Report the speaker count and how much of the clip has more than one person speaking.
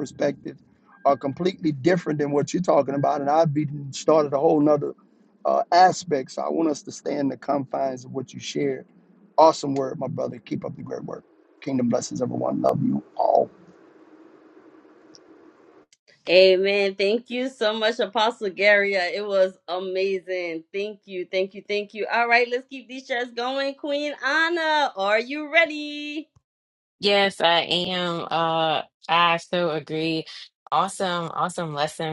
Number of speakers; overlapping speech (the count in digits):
3, no overlap